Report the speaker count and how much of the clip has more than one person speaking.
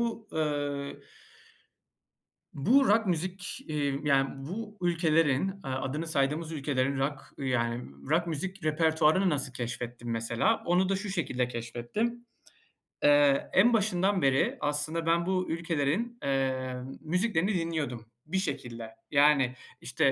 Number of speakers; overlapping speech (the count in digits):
1, no overlap